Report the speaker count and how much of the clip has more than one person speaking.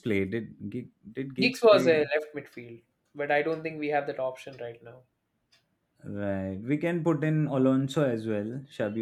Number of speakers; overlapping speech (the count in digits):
2, about 7%